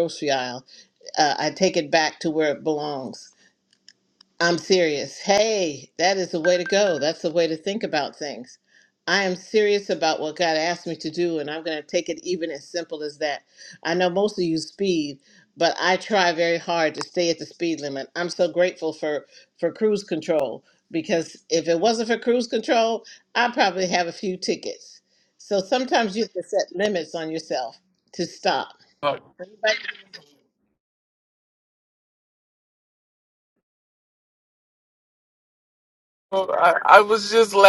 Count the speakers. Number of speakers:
two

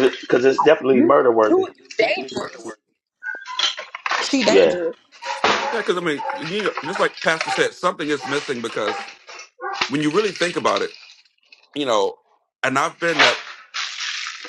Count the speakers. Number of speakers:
three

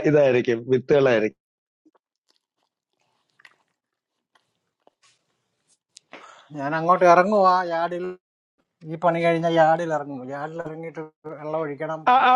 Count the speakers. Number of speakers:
two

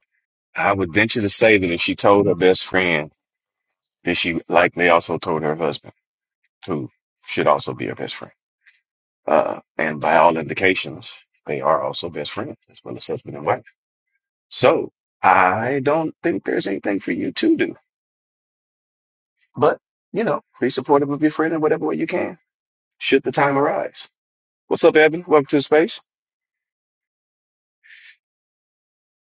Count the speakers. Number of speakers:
one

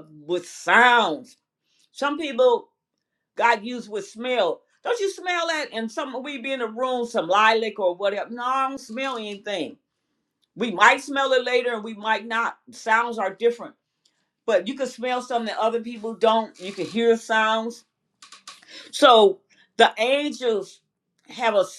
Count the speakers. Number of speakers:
one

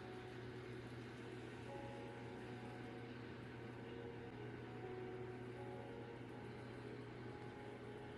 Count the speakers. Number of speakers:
zero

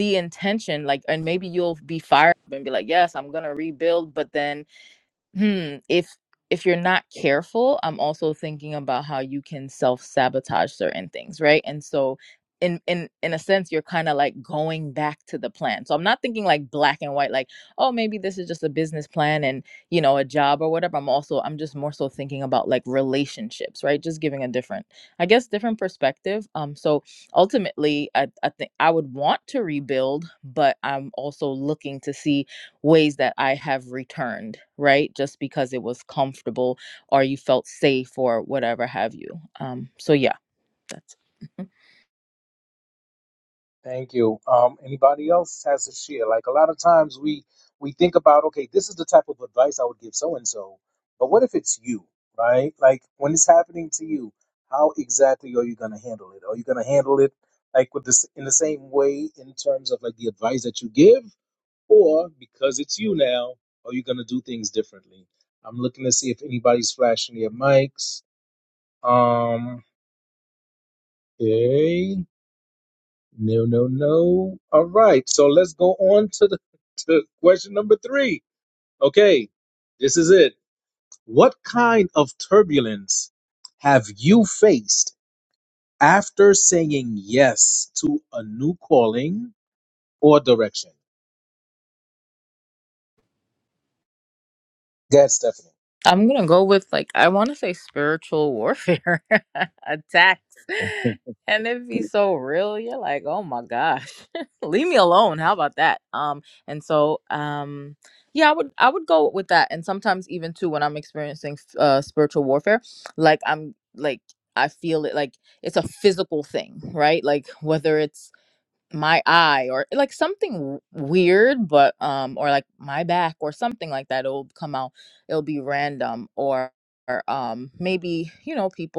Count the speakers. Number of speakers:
two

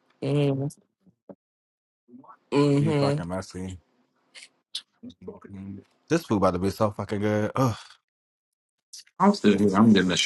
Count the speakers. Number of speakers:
three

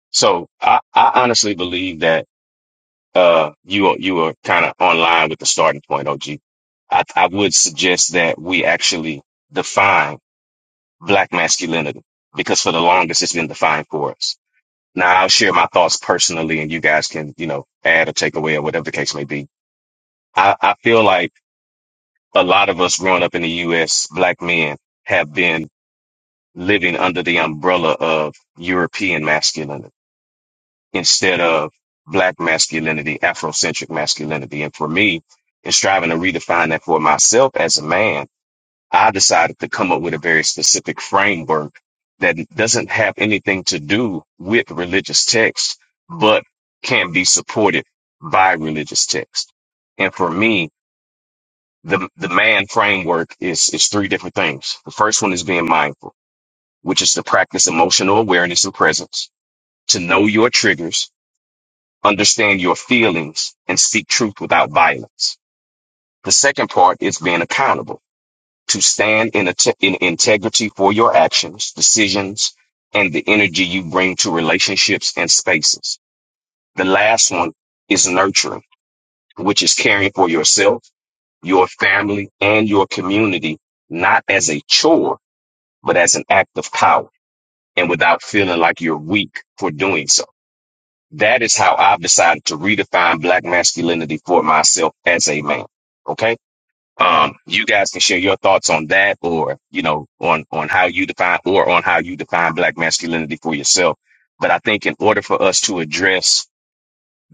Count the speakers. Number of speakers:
one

